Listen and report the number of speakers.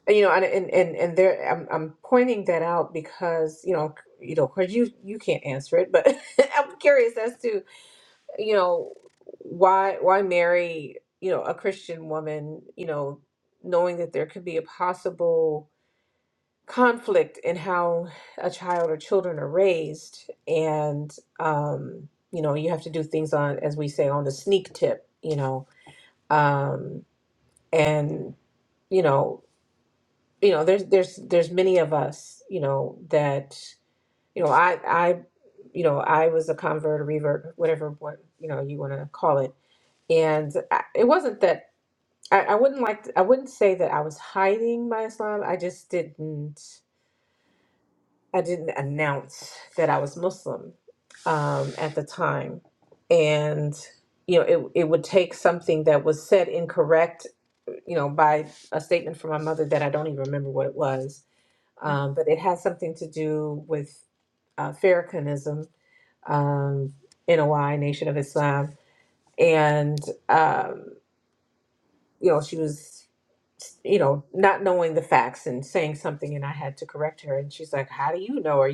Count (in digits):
1